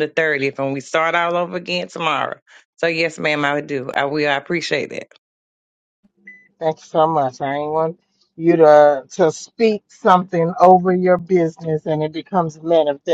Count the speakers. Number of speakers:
two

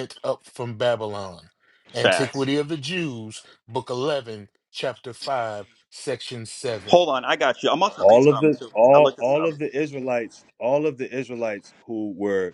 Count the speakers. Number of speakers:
three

